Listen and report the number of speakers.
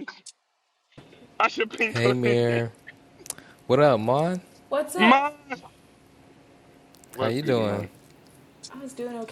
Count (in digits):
3